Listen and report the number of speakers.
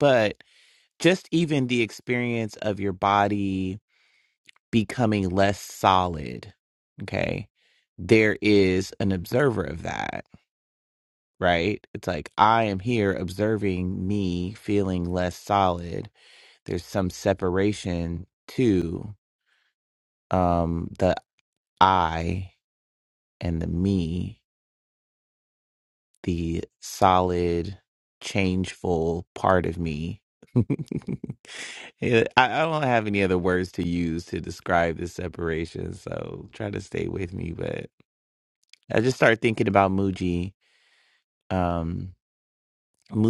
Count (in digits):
1